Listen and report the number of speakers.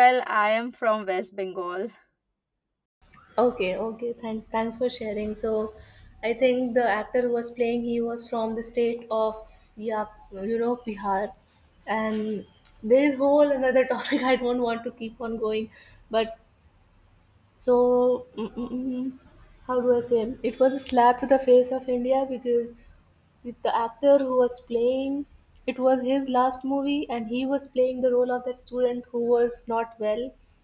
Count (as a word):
two